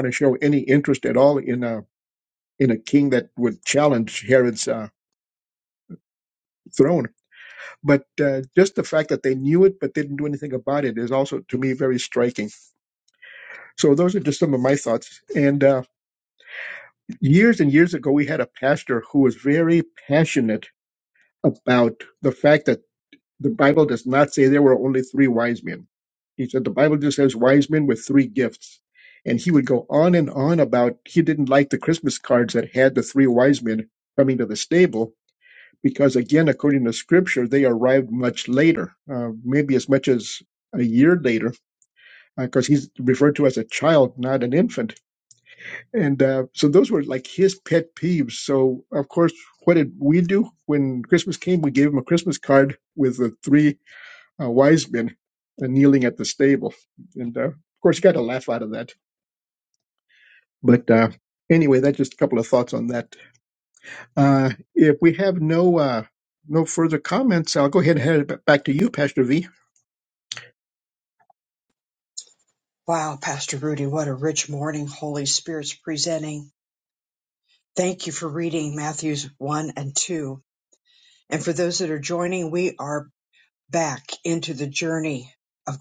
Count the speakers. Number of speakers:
two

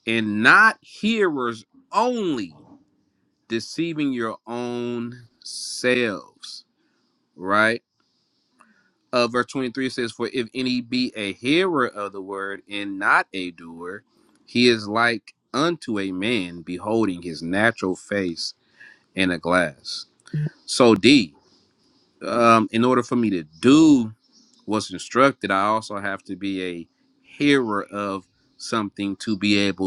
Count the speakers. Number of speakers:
one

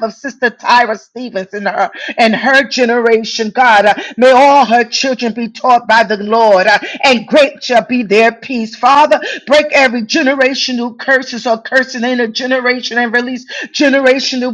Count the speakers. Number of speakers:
one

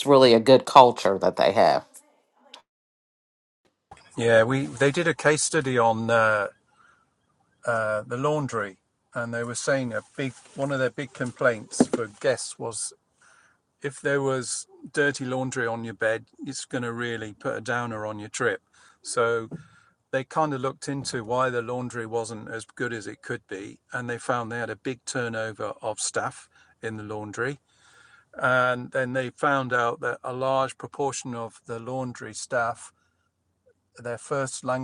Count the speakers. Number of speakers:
two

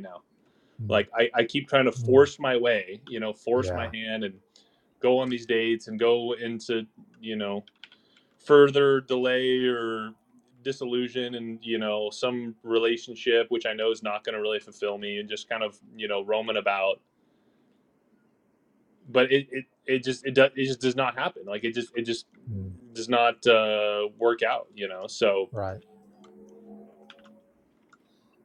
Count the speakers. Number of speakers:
two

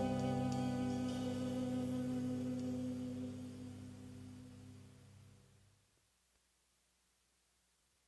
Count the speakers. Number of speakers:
zero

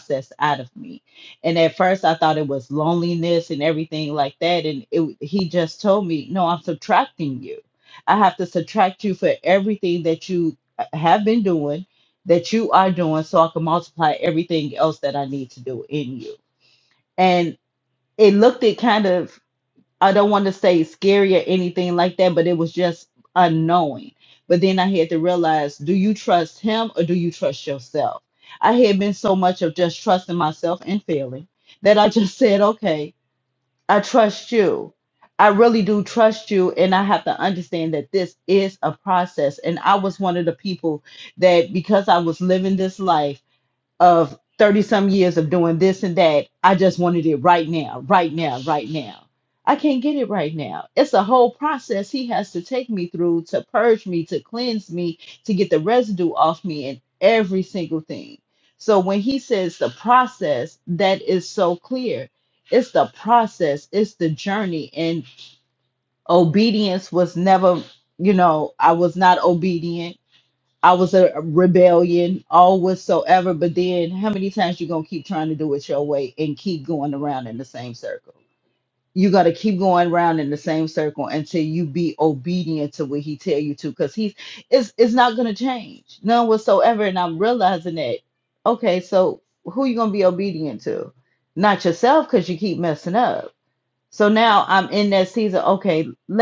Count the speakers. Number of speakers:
one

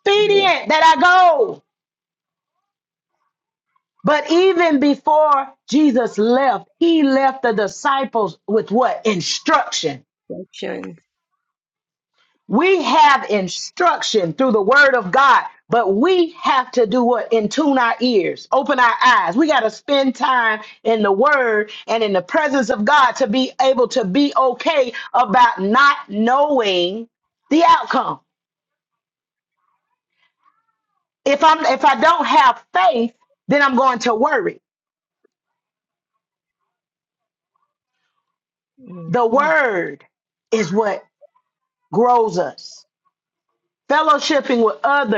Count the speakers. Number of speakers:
two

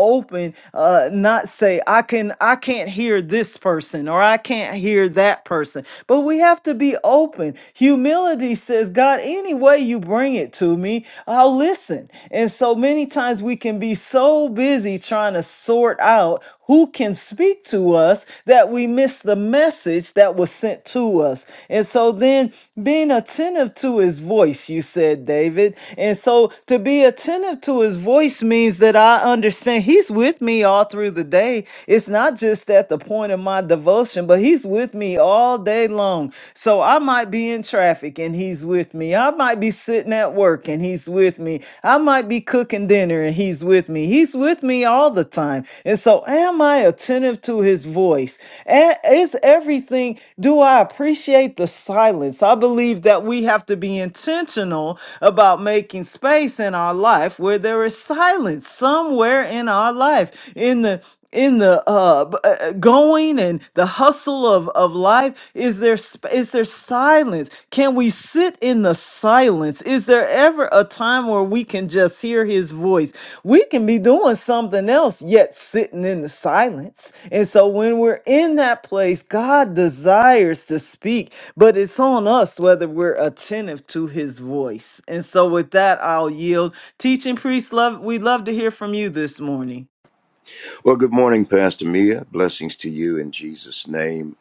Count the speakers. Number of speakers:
two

